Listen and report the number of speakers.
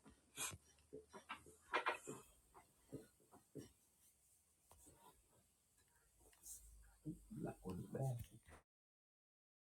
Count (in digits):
0